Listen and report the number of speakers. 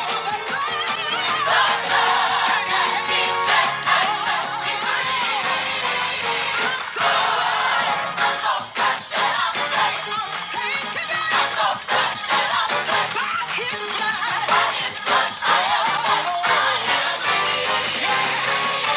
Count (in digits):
0